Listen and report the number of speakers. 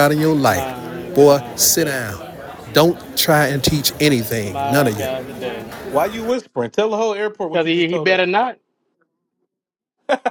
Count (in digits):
3